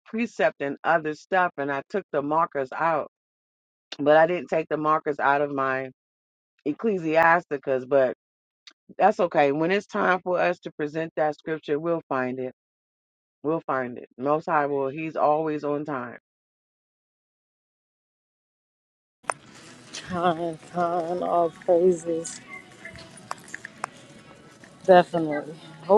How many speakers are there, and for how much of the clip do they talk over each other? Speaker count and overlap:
two, no overlap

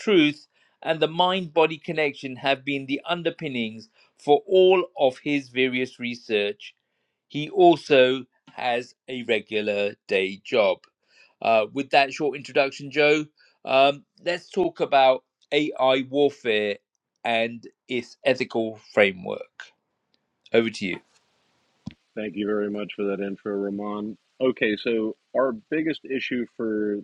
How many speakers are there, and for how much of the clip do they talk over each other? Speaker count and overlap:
two, no overlap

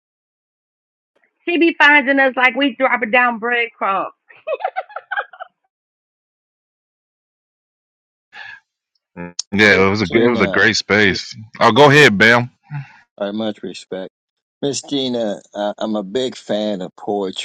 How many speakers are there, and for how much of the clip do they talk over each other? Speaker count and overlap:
three, about 7%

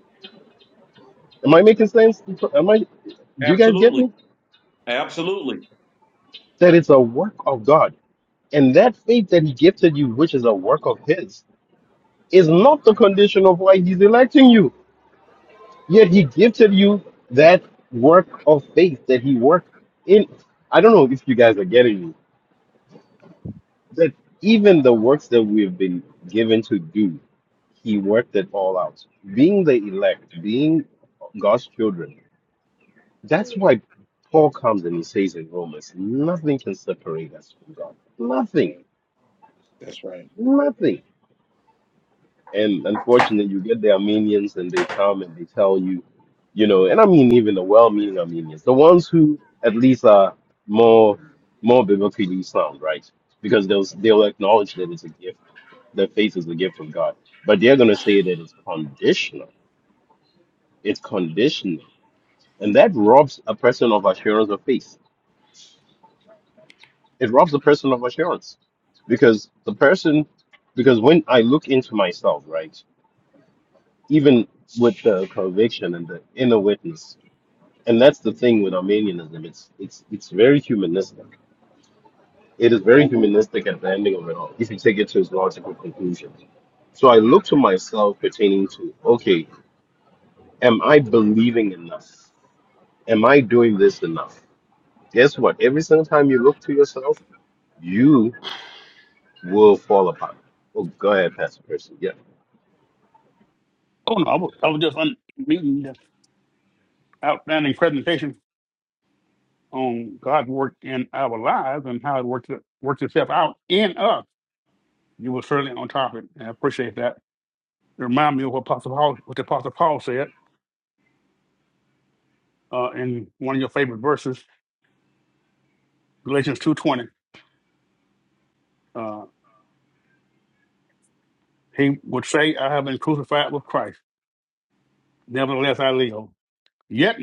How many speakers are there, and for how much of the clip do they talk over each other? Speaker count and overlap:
three, about 1%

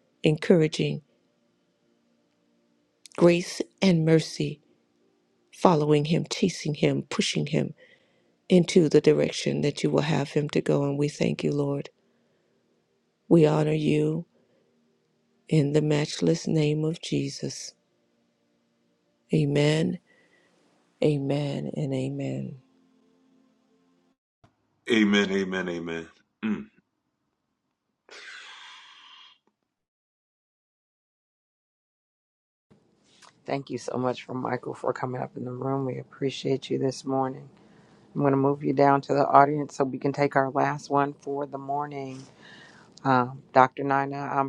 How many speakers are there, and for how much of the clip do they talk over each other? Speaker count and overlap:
three, no overlap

